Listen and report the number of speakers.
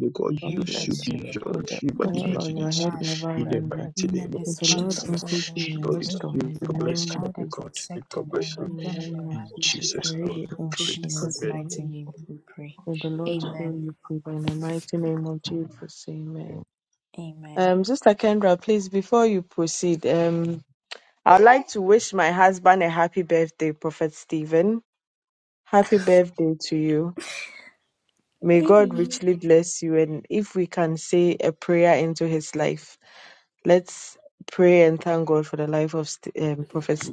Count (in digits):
3